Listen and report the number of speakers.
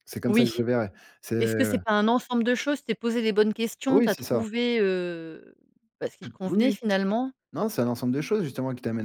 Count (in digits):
2